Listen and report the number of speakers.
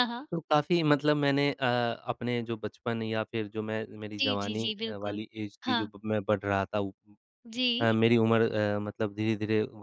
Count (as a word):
two